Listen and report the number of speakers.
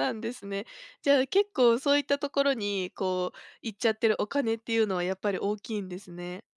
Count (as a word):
one